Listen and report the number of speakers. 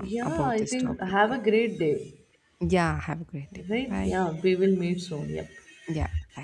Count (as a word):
two